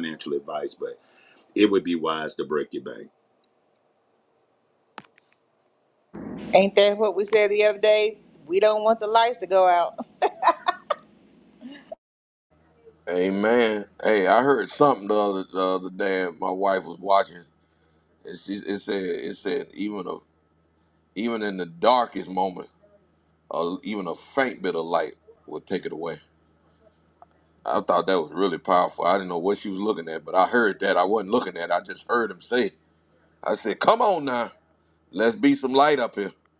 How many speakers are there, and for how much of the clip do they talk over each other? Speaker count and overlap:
3, no overlap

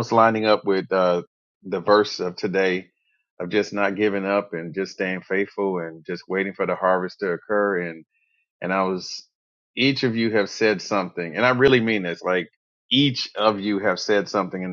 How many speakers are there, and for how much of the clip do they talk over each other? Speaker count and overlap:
1, no overlap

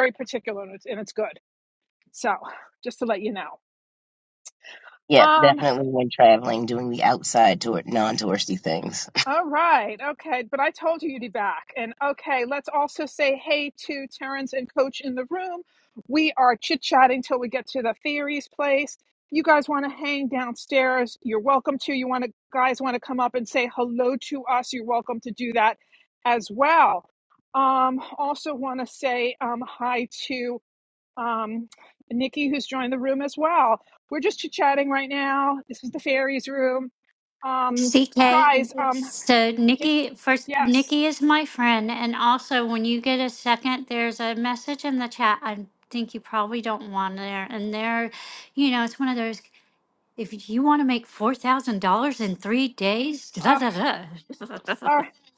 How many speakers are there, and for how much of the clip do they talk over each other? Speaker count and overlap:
3, about 4%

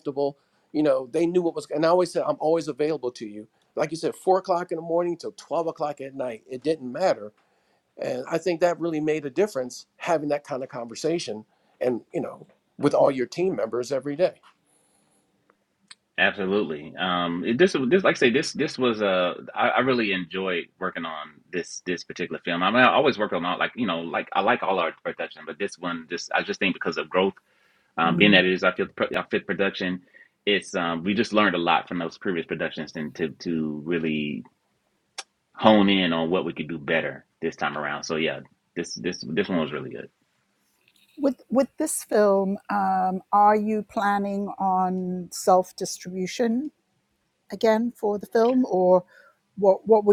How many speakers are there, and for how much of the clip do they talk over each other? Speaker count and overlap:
3, about 1%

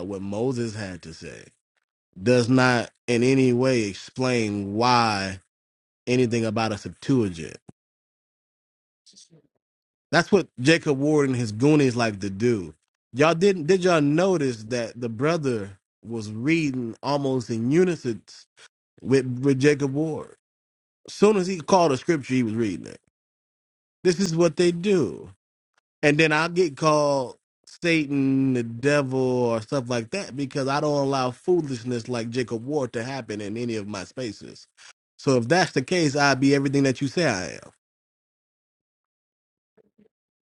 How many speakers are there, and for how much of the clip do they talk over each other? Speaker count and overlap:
1, no overlap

